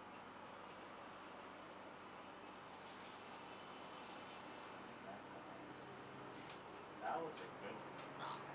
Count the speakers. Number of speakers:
one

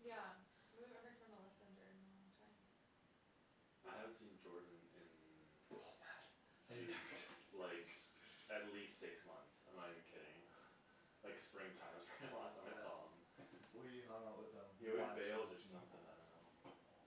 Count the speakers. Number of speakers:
three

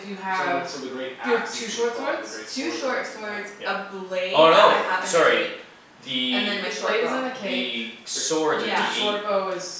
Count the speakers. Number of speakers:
four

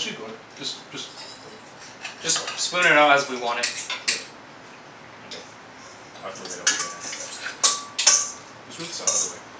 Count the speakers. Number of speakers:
three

